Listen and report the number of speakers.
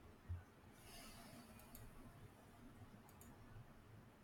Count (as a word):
zero